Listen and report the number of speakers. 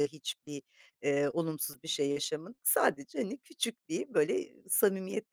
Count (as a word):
one